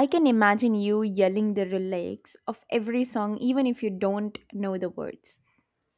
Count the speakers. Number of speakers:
1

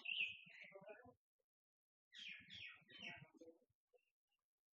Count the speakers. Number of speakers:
0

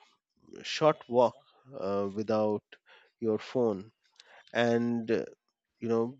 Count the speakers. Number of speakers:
1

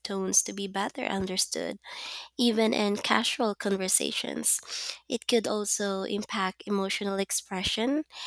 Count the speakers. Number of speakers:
1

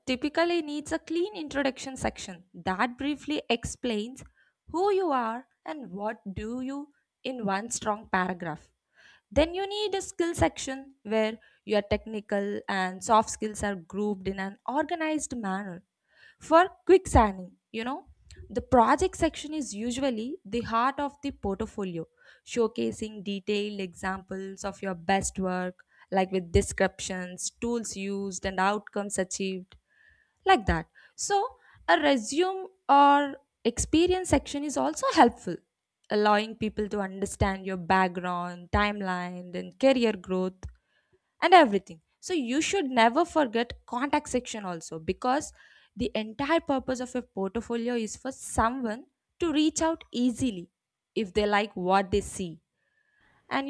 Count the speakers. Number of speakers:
1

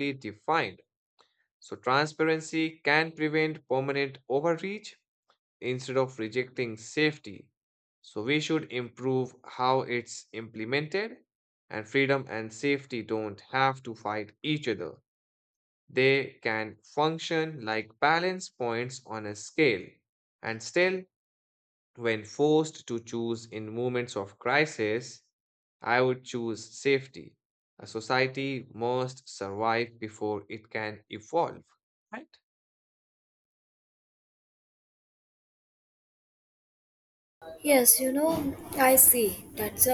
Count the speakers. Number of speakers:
2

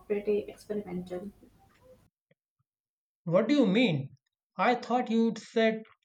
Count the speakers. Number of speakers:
2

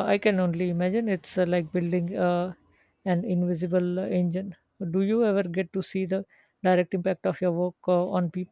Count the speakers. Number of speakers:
1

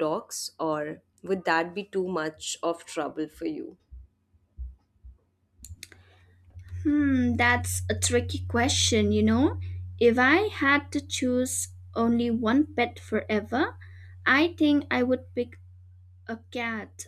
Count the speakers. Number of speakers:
2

